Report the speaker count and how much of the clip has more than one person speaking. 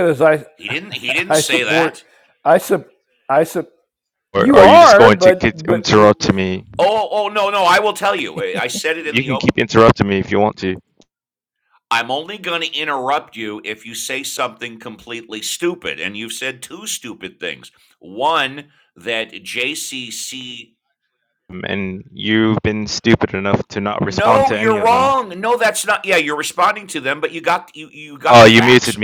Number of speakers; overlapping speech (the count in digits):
3, about 15%